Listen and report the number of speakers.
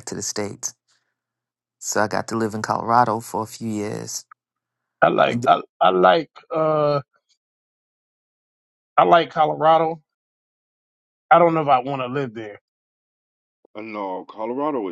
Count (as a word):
three